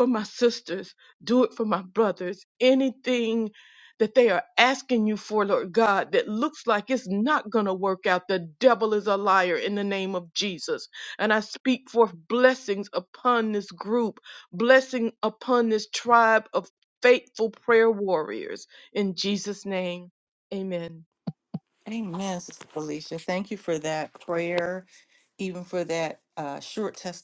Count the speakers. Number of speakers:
2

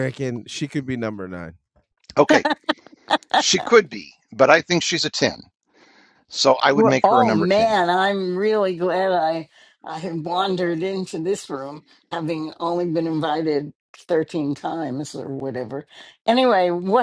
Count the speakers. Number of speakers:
3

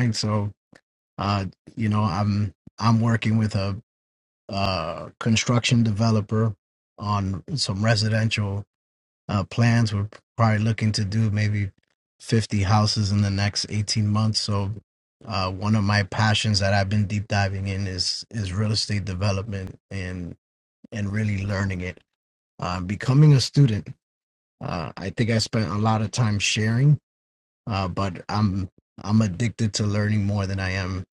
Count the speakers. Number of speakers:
1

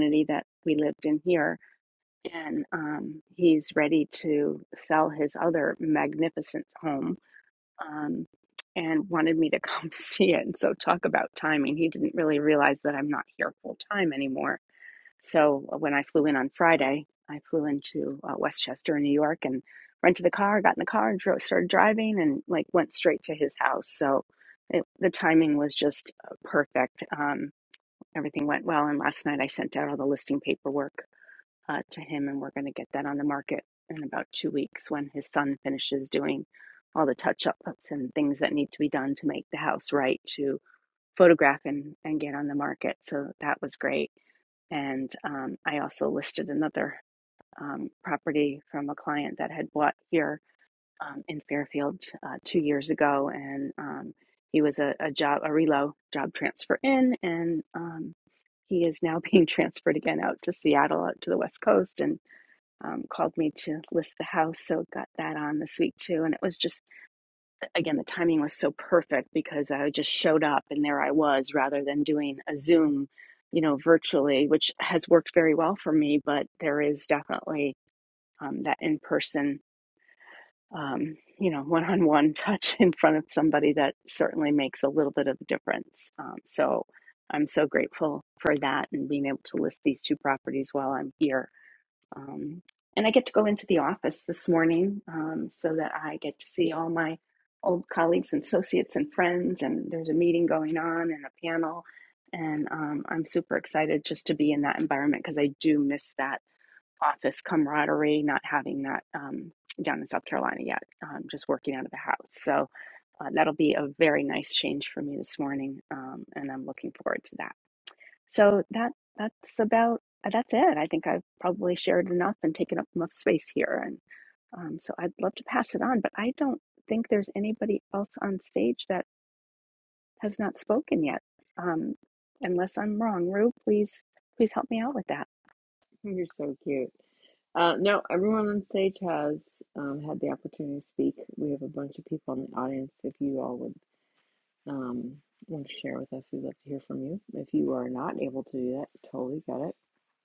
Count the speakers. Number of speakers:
2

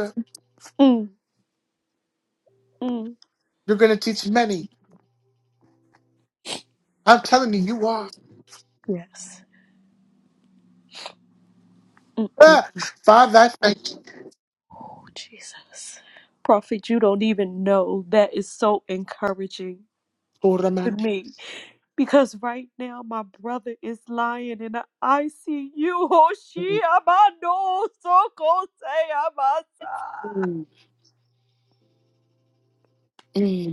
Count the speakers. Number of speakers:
2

